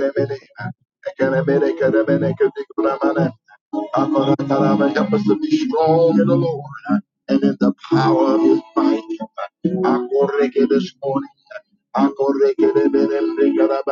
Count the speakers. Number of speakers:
1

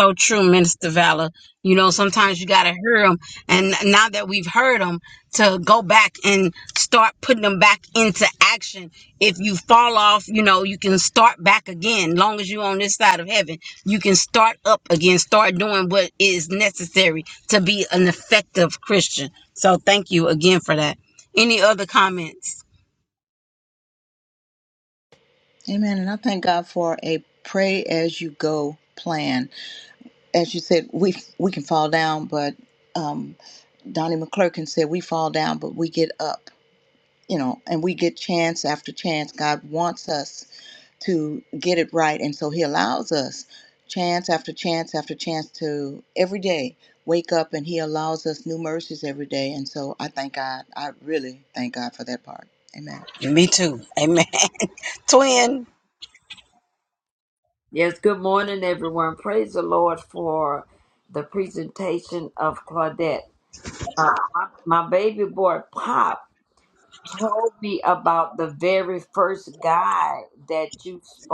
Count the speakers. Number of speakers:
3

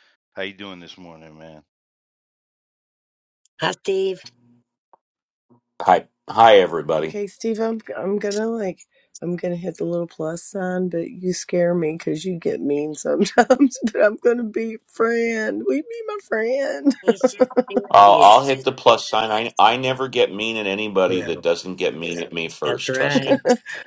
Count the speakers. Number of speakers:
4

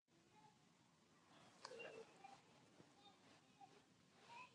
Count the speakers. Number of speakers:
0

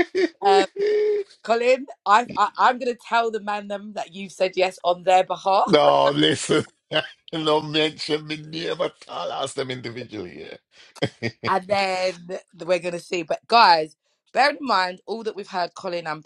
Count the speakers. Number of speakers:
2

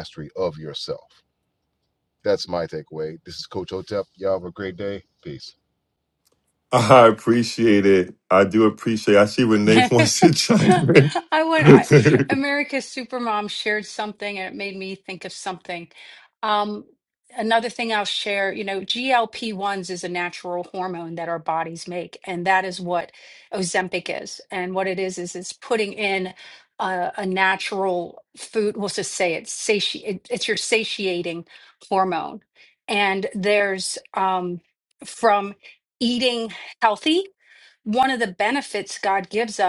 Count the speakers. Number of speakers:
3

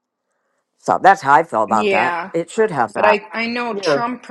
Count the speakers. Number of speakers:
2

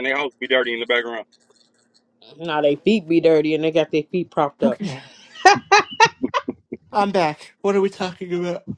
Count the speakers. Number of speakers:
3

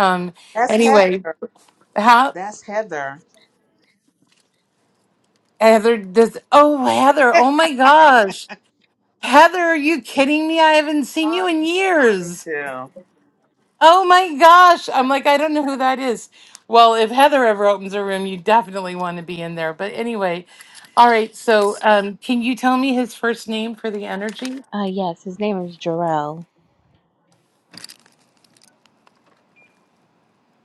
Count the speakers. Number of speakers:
3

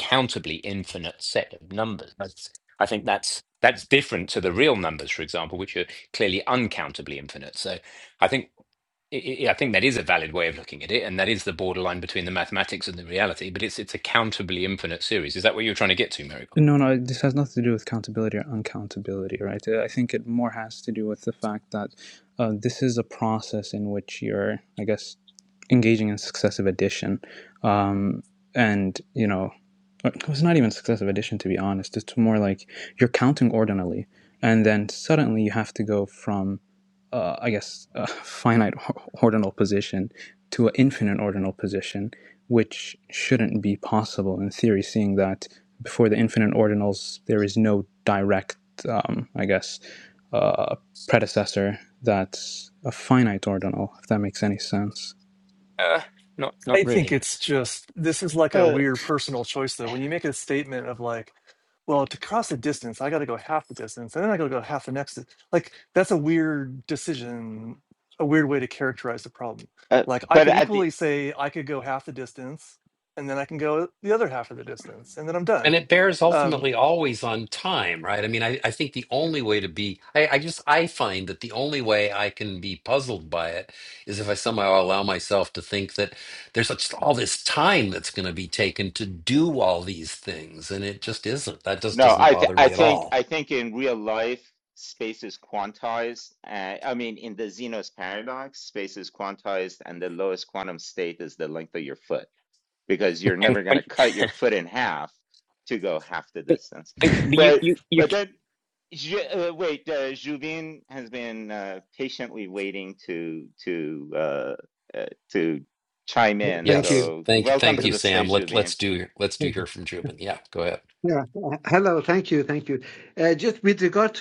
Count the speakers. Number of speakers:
6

